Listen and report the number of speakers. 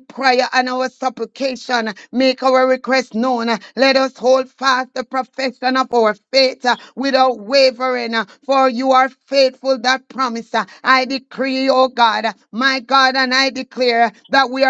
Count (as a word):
one